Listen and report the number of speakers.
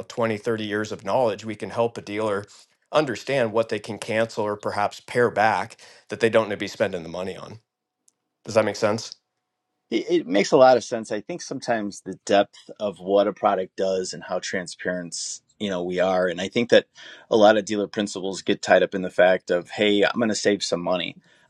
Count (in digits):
2